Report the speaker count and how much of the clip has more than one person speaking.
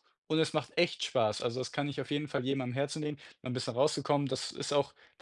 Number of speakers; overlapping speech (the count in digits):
1, no overlap